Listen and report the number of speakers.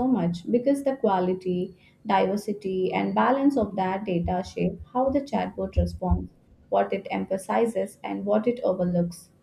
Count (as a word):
one